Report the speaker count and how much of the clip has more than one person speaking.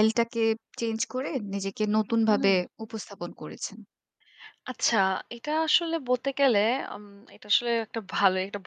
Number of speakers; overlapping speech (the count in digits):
2, about 4%